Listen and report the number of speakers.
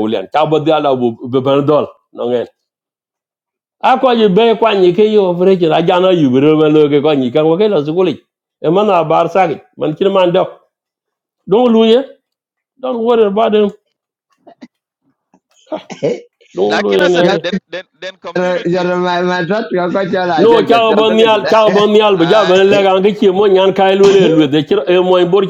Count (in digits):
3